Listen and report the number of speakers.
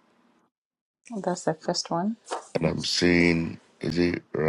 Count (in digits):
2